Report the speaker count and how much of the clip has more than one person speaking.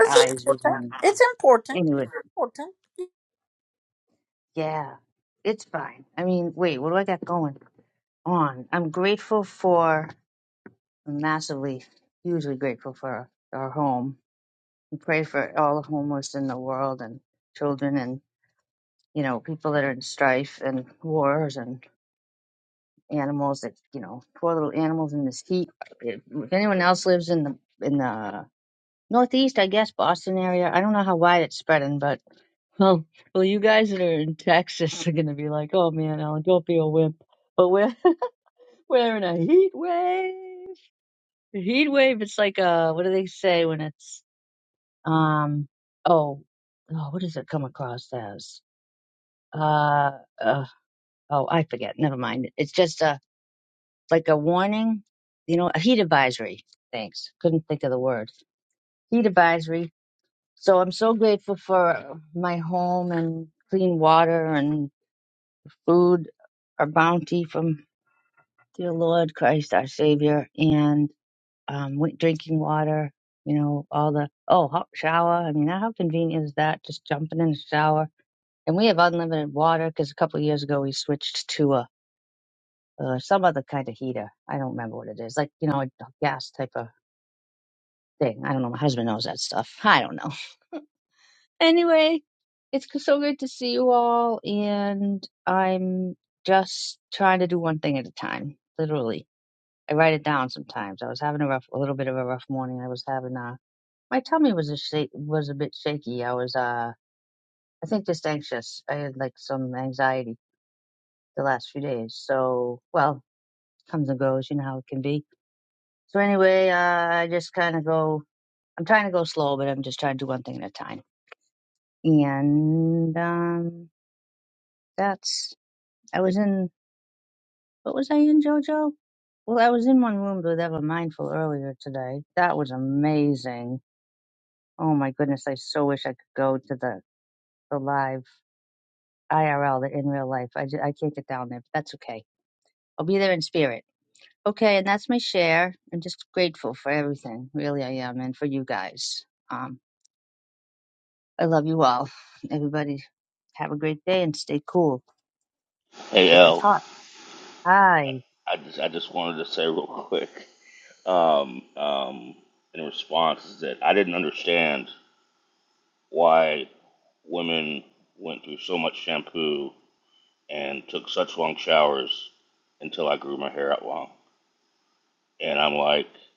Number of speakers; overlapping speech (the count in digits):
3, about 1%